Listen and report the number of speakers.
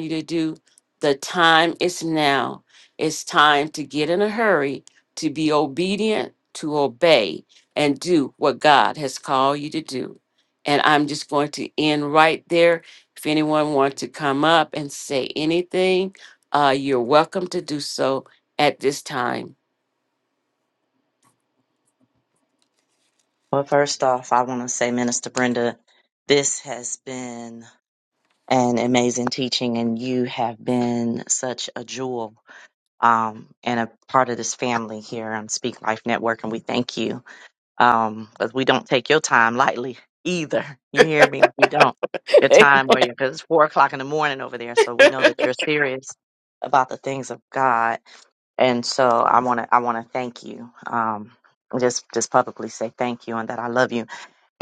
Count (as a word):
two